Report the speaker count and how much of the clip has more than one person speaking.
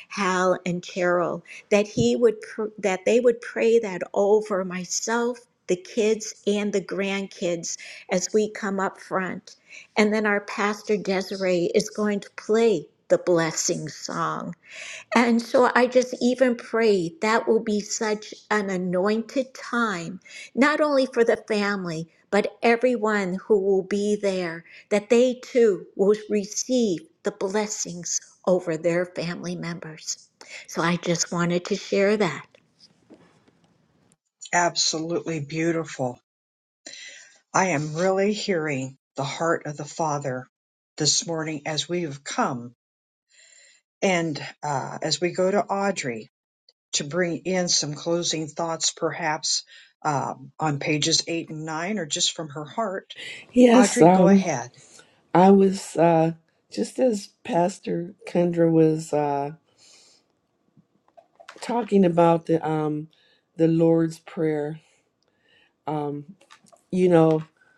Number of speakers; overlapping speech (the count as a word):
three, about 1%